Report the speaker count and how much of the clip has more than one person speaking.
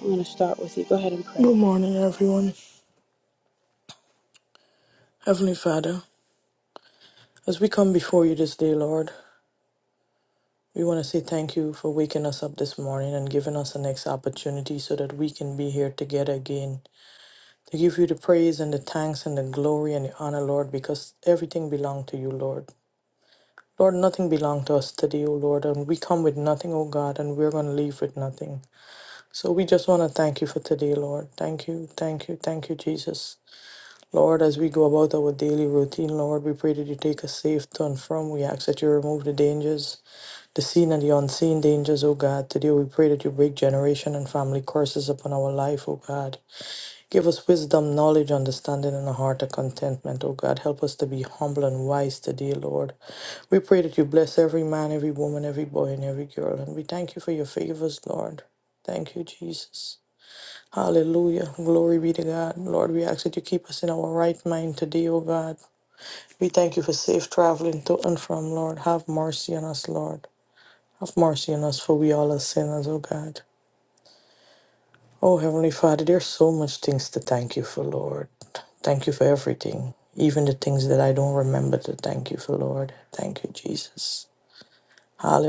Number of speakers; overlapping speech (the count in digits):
2, under 1%